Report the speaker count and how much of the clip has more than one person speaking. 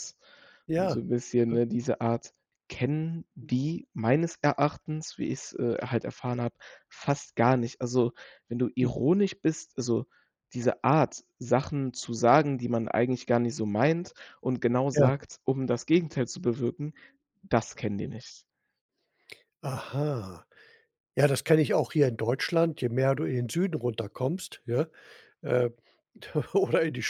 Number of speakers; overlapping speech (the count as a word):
two, about 2%